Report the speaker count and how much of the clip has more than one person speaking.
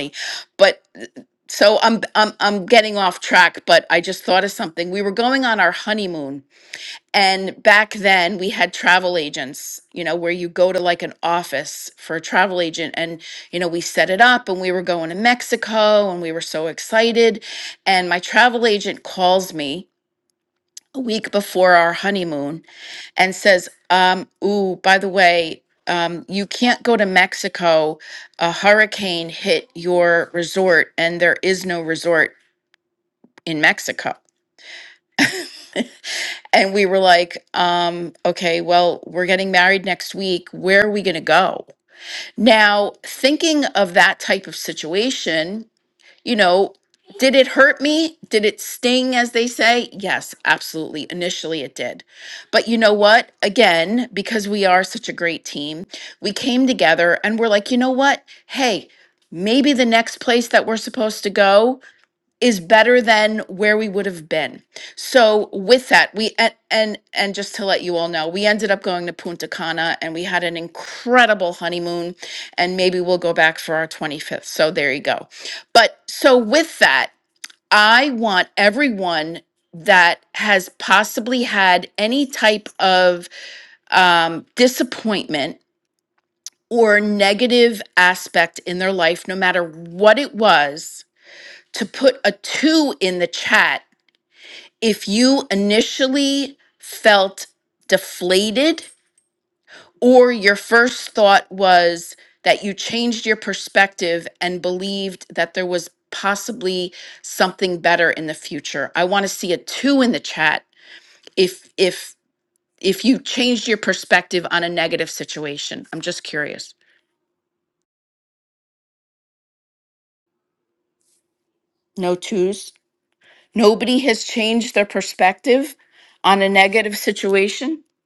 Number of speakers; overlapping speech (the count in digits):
1, no overlap